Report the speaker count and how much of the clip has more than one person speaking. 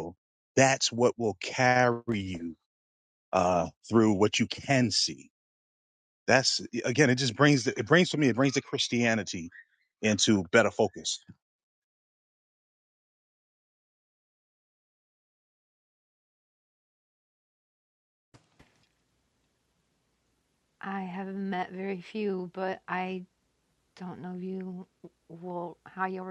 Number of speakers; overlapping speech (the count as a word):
two, no overlap